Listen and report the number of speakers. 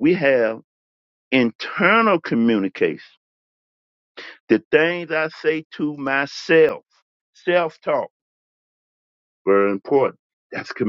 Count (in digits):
1